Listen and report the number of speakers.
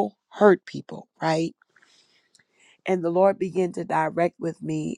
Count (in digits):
1